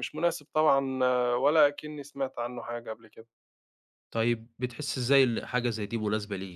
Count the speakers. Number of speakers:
2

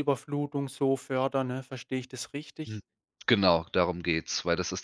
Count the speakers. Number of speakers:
2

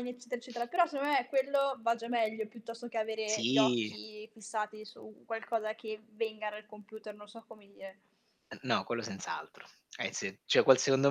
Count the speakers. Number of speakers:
2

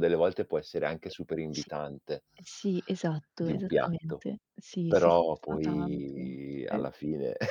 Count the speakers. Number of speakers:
2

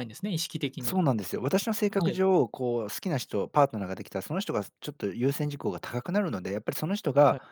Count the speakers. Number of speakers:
2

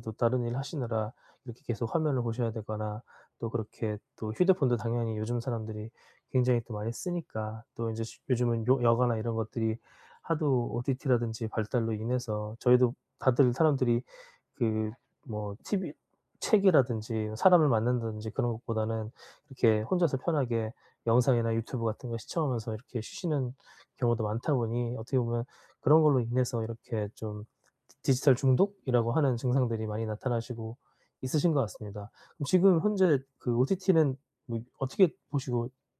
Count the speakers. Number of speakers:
1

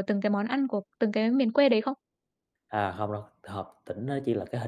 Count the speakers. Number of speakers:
2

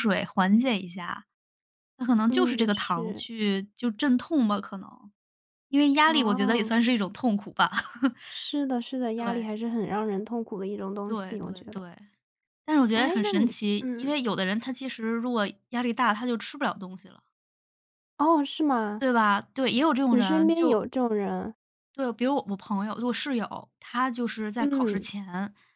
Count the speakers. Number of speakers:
2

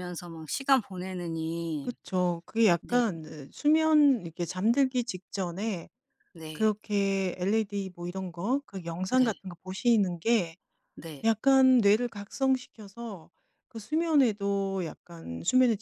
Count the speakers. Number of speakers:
2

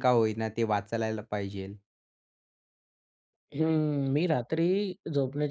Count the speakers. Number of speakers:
2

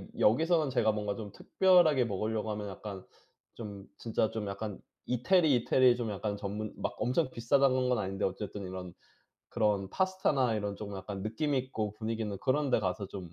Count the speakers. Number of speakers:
1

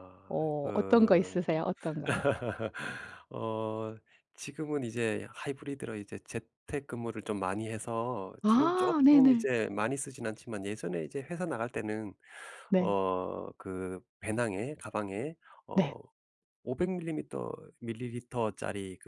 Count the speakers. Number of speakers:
2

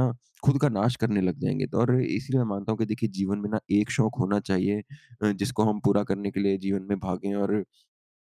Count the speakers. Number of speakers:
1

